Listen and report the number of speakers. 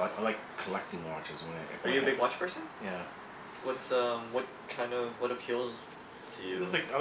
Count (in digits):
2